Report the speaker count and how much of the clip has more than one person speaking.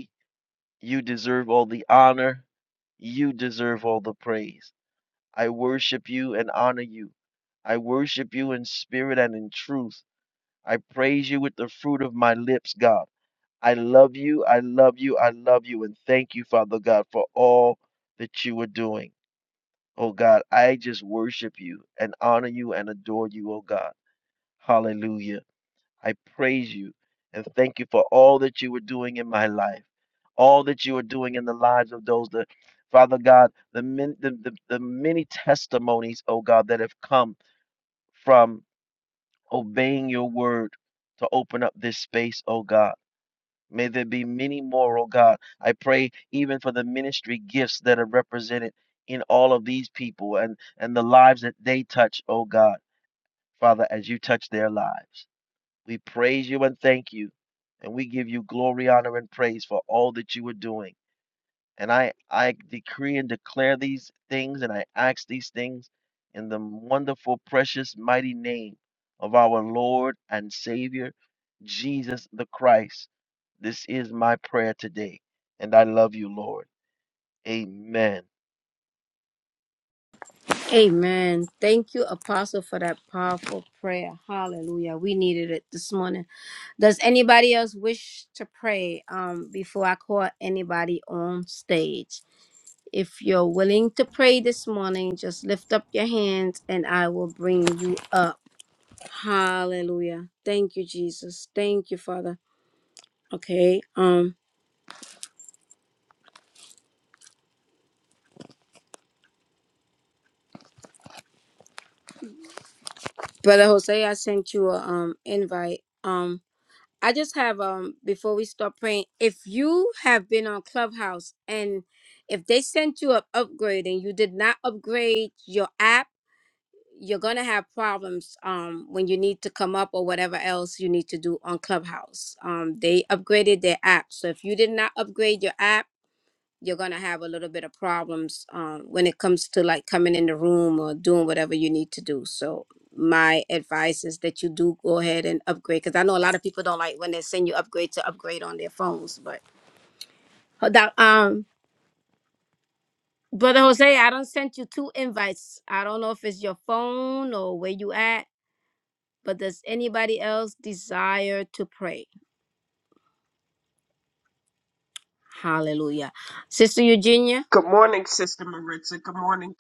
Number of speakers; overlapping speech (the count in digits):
3, no overlap